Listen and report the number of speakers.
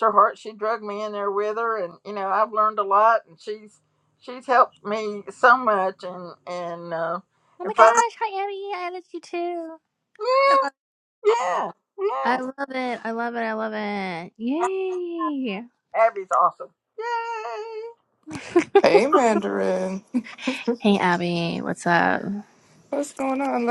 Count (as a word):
three